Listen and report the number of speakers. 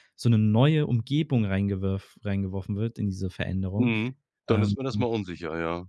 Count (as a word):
two